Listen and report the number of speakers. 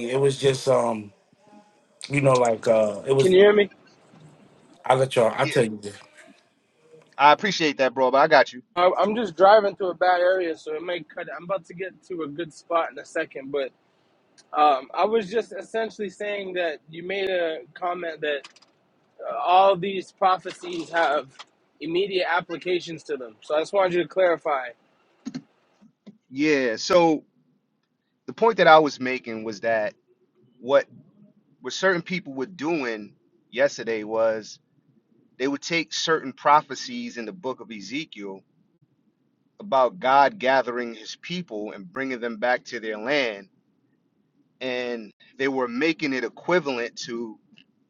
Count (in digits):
3